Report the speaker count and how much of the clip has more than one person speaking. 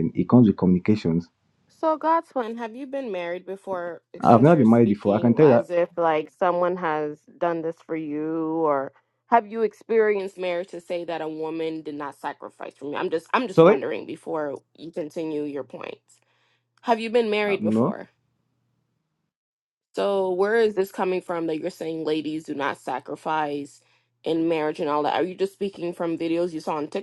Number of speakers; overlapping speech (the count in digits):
2, about 8%